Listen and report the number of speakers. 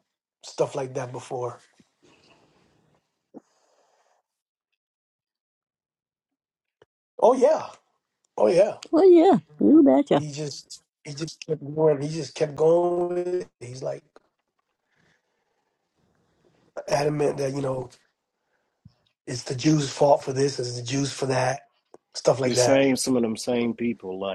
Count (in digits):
3